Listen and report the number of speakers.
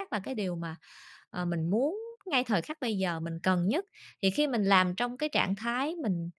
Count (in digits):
1